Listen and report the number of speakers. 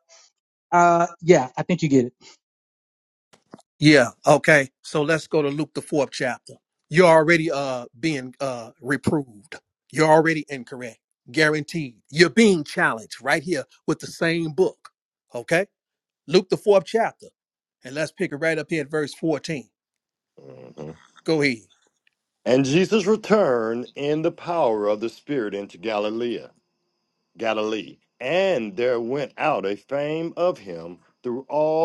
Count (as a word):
three